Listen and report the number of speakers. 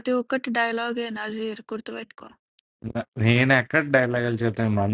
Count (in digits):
2